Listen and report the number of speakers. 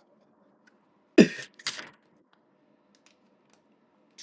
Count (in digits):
0